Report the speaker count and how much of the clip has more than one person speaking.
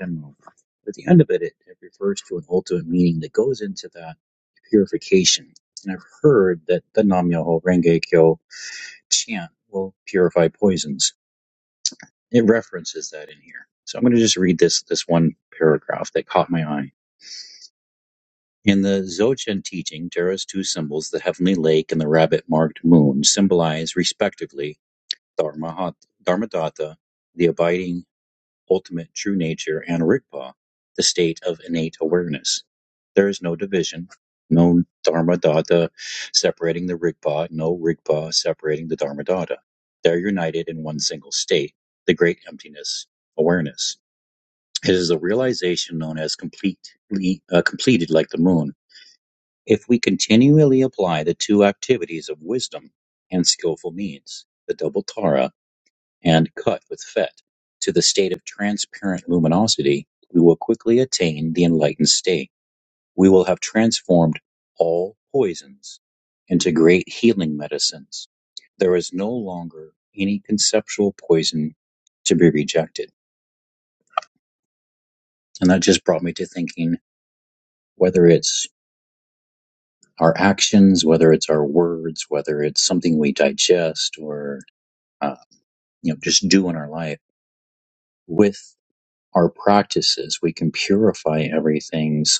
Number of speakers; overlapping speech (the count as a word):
one, no overlap